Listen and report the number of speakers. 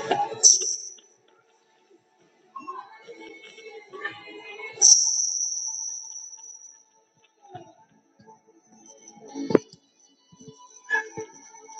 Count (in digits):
0